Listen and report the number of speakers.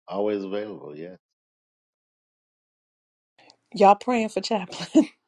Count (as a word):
two